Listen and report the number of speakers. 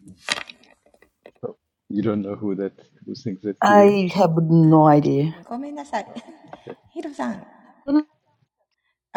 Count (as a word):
three